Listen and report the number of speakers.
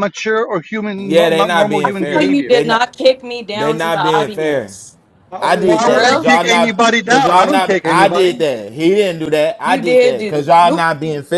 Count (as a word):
three